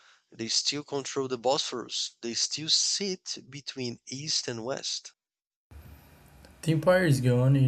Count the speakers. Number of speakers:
2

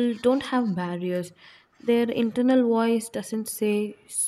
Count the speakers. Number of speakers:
1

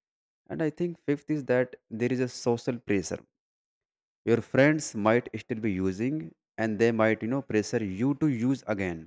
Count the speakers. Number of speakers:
1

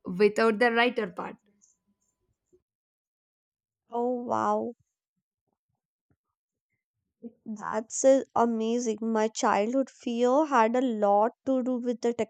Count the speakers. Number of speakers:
2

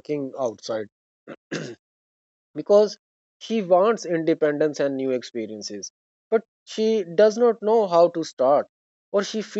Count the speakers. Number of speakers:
1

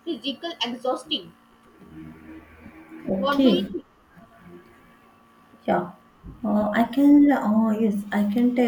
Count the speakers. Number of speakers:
2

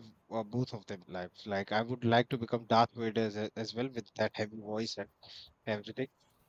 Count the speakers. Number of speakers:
1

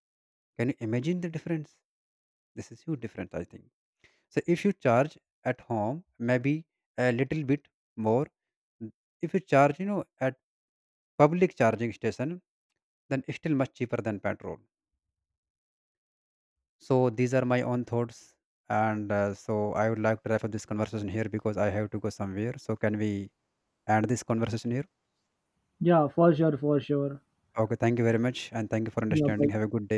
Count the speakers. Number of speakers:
2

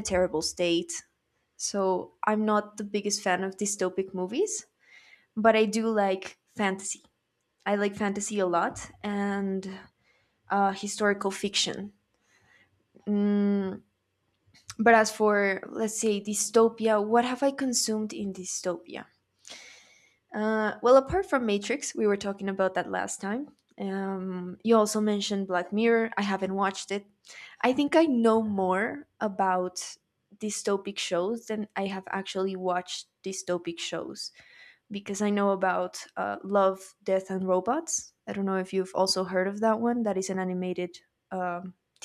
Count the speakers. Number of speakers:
1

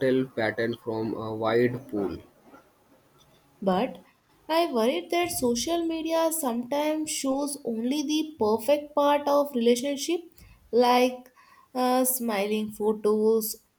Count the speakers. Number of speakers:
2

